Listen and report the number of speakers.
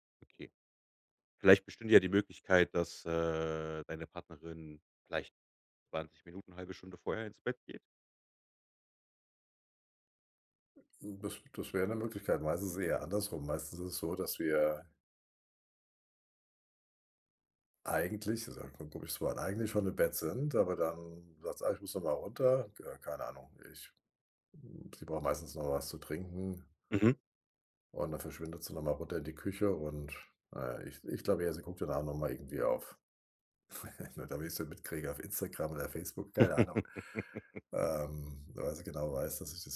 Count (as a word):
two